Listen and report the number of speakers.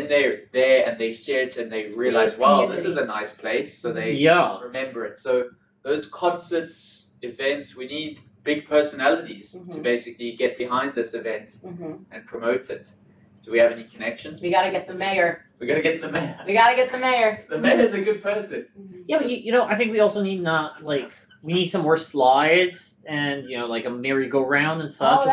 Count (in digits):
3